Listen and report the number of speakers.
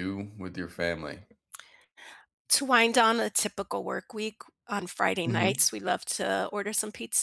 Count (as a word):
two